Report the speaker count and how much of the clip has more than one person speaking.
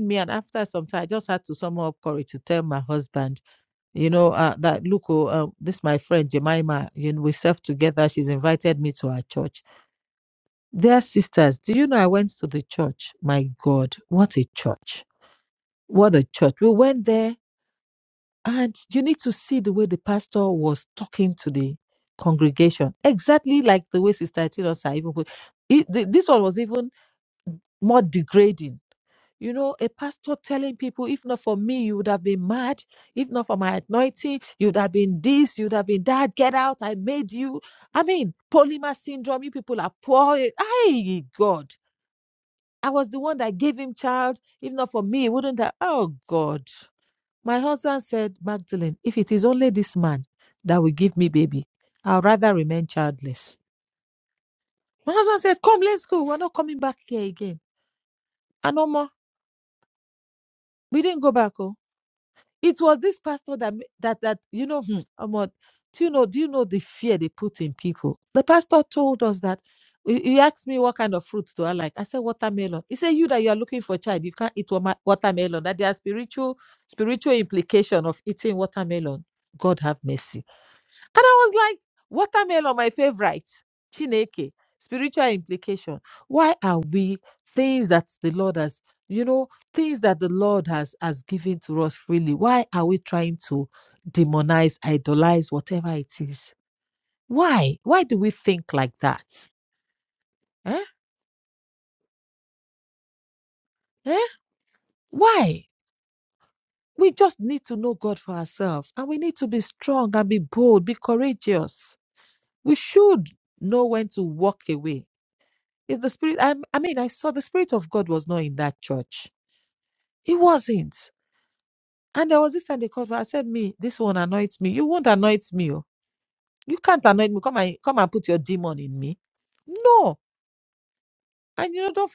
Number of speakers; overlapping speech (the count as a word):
one, no overlap